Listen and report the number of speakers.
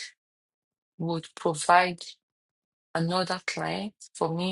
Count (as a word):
one